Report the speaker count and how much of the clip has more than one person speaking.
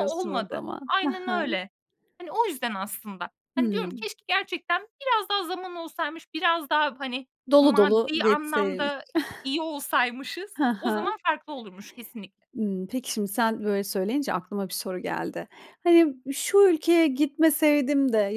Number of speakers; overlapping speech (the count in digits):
2, about 20%